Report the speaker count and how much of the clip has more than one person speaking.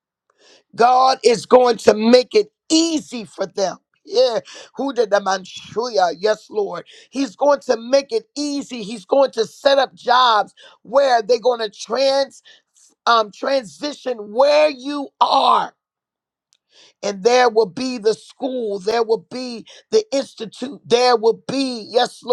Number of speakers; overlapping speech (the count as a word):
one, no overlap